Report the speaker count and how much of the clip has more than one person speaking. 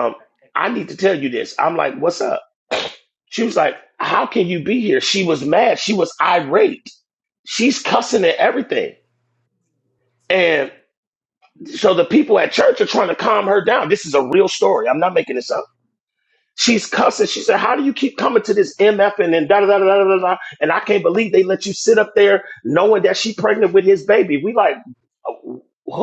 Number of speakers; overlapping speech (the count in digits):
1, no overlap